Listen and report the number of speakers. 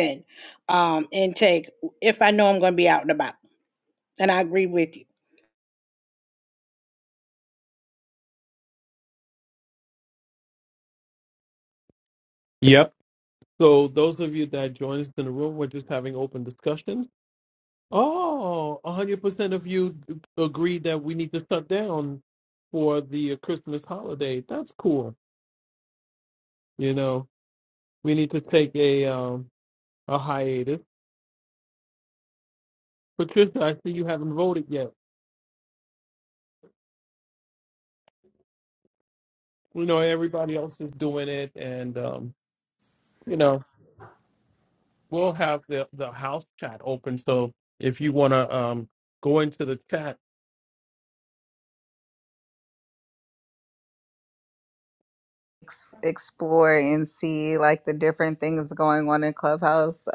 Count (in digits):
3